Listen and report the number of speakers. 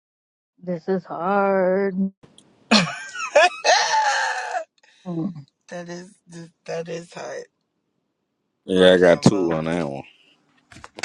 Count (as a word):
three